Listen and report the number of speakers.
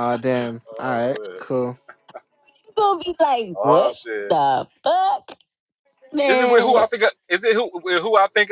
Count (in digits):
3